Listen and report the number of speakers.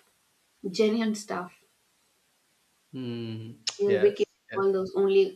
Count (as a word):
two